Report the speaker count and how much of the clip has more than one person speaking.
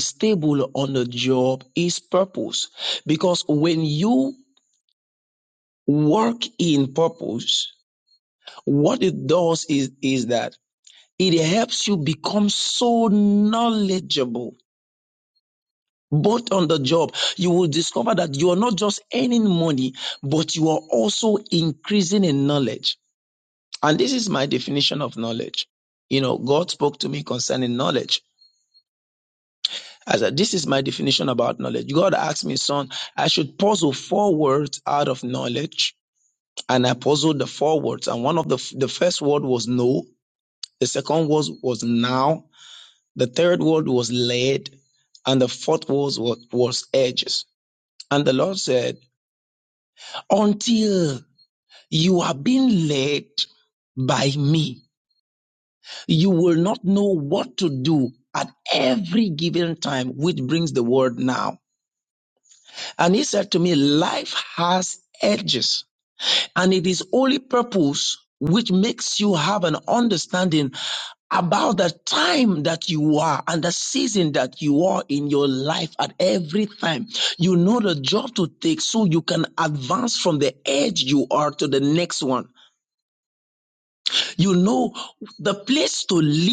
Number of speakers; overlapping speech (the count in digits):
1, no overlap